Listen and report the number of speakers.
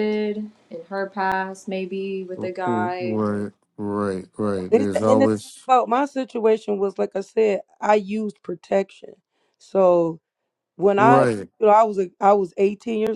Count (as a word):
three